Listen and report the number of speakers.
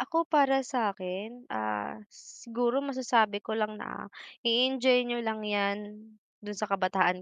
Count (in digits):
1